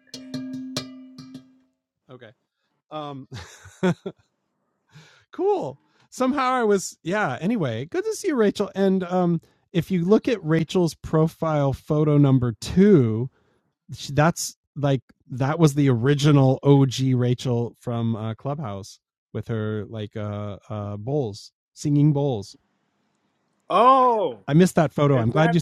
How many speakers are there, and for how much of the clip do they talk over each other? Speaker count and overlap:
2, about 2%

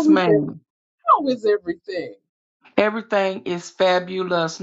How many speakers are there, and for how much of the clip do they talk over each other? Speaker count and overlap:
2, about 9%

